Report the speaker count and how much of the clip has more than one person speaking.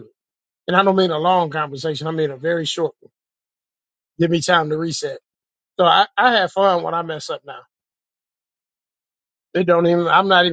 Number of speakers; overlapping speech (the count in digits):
1, no overlap